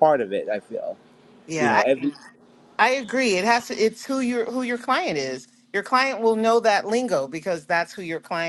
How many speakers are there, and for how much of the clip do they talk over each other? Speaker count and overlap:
two, about 3%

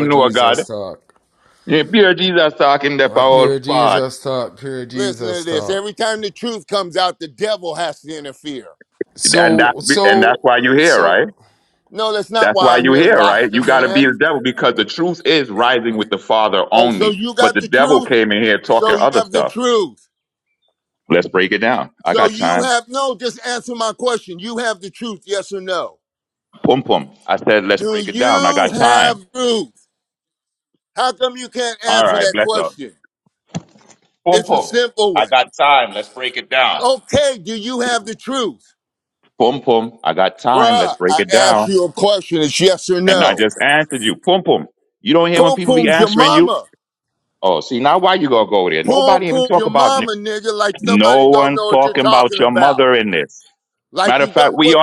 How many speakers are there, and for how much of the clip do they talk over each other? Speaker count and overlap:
three, about 33%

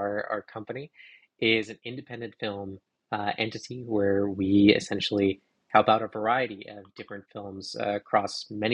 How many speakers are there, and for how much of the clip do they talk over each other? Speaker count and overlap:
one, no overlap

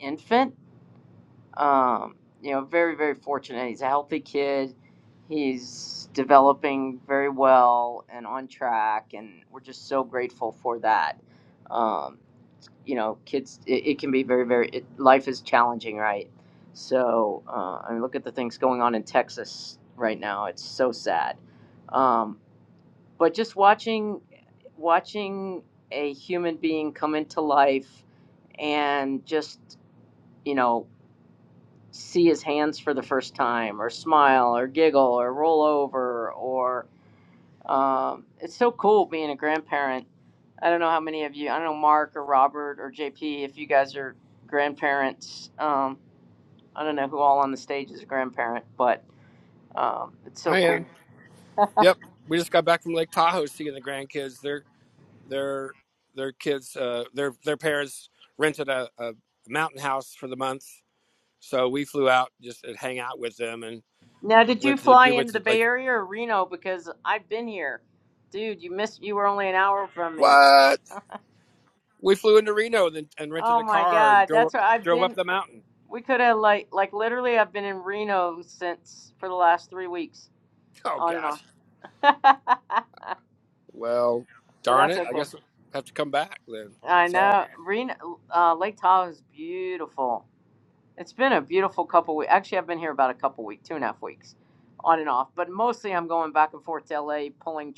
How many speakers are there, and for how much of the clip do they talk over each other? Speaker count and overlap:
two, about 4%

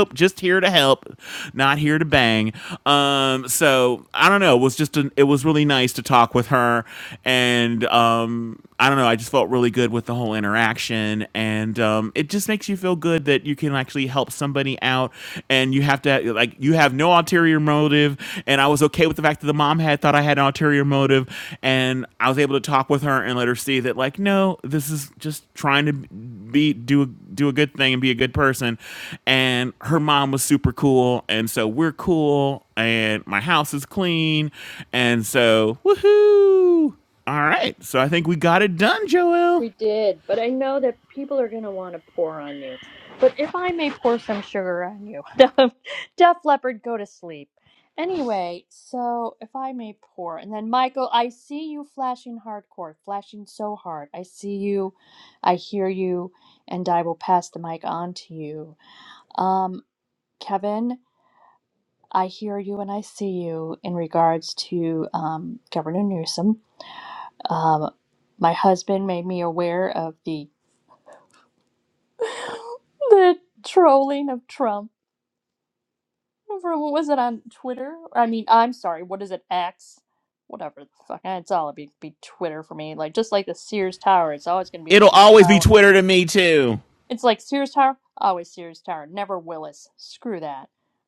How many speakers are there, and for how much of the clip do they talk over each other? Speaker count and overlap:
two, about 1%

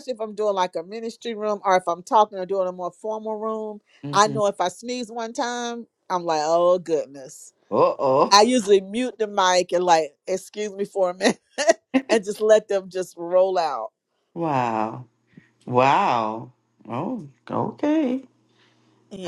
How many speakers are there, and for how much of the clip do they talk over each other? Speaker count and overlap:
two, about 2%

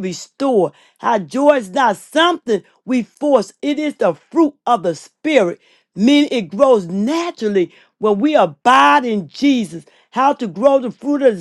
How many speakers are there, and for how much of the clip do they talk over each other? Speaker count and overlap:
one, no overlap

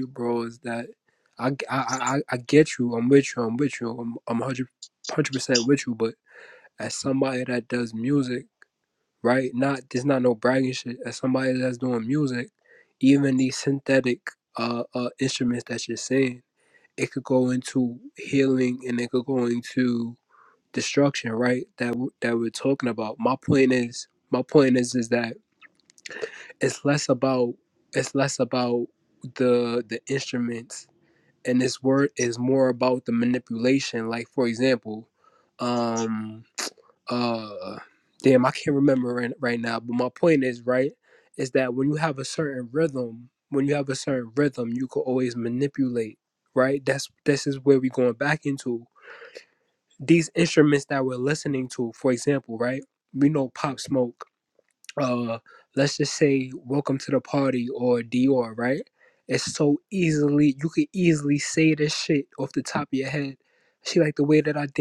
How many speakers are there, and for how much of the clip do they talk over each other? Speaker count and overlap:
one, no overlap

